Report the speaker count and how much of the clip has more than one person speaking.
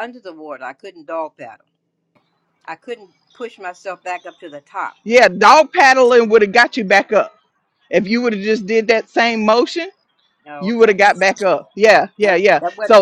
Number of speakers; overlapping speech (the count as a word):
two, about 9%